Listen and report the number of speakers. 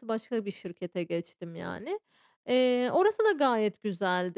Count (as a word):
one